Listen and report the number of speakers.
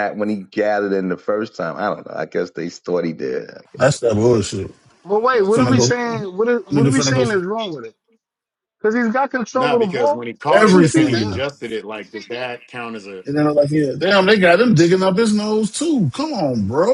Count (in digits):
4